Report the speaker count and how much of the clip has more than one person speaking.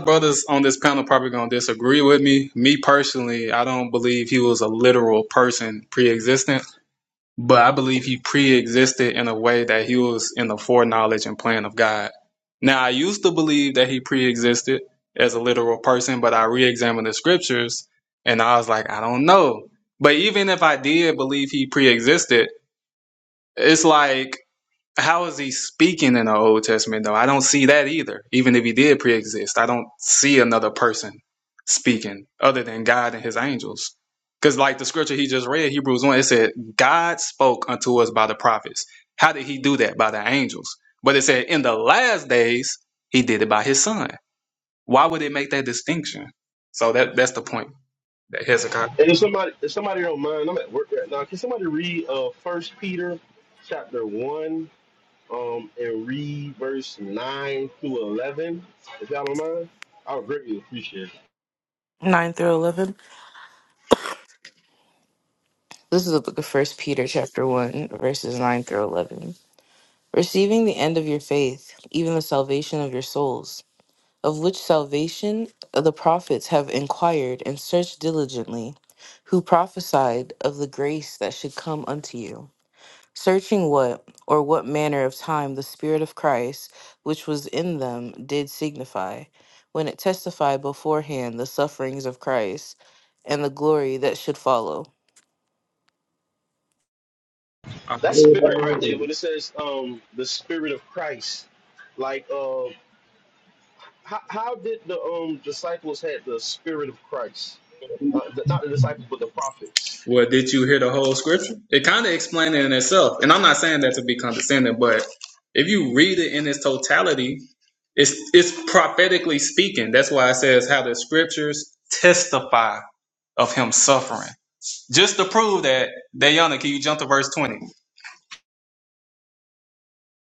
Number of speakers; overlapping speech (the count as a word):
three, under 1%